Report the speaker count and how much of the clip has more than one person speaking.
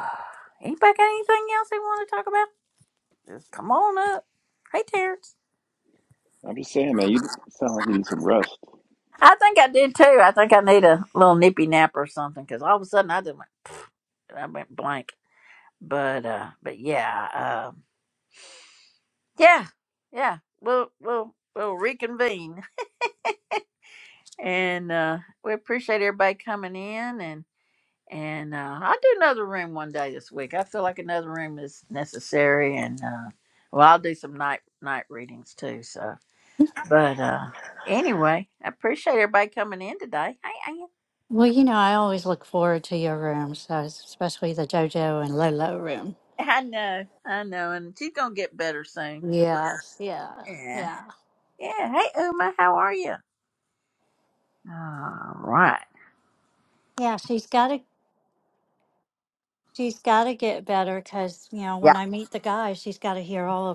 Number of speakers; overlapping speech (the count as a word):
three, under 1%